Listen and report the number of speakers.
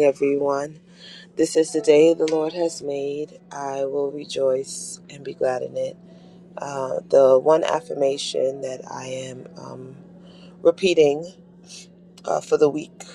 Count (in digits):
1